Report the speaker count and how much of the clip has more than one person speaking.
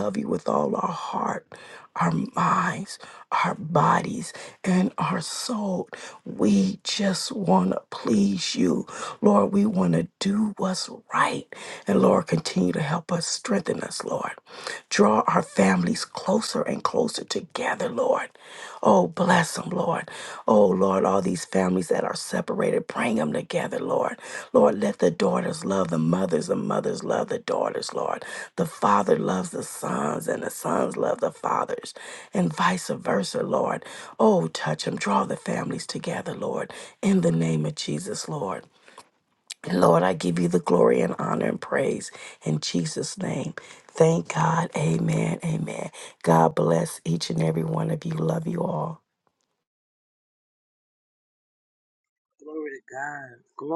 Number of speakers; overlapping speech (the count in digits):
2, no overlap